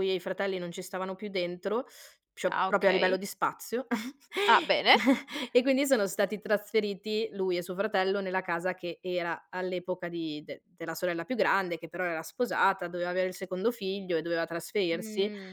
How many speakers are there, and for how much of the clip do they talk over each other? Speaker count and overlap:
2, about 7%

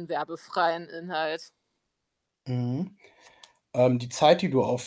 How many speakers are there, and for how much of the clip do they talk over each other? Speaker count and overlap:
2, no overlap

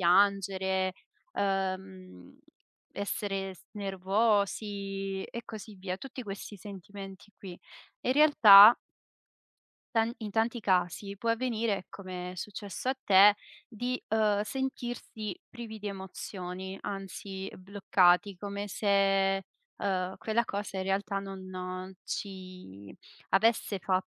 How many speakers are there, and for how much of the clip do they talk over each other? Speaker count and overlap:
1, no overlap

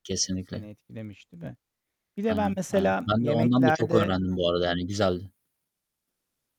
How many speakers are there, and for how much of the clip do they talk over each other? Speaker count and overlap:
2, about 29%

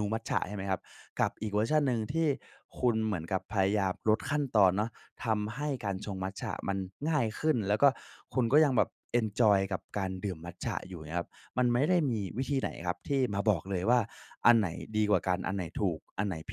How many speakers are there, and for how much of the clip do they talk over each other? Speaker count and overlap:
1, no overlap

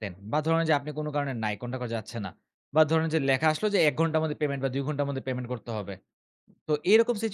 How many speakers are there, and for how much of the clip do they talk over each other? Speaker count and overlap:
1, no overlap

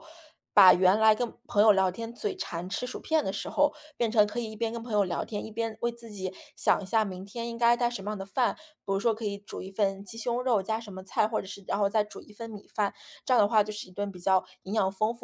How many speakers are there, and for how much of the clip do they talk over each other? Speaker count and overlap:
1, no overlap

